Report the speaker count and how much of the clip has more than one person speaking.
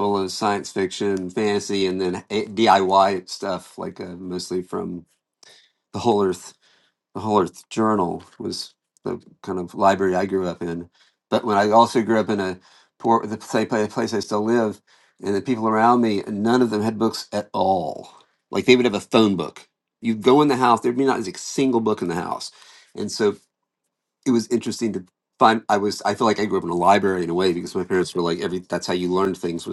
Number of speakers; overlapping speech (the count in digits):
1, no overlap